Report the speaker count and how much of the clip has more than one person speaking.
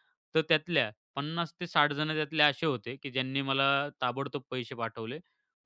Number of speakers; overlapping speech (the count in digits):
1, no overlap